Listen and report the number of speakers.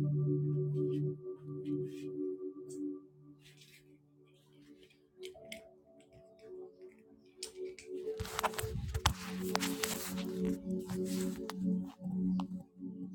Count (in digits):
0